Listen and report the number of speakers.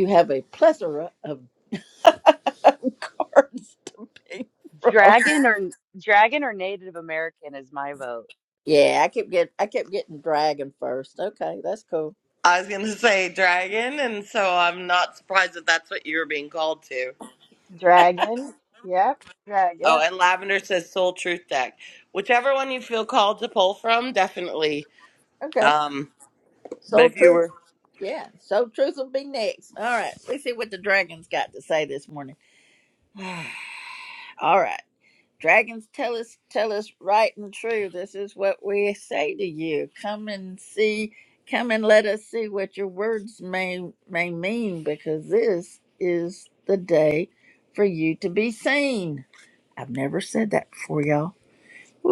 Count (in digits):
4